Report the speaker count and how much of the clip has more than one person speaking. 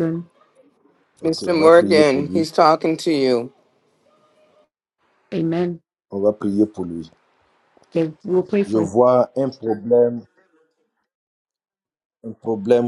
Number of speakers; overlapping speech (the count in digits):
3, about 11%